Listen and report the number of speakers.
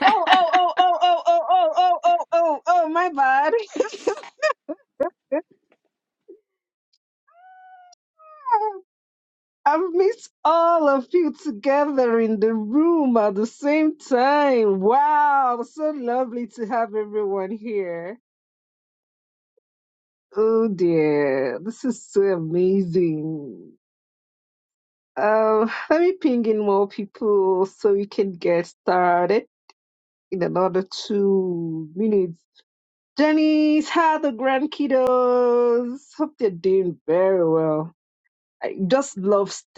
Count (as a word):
one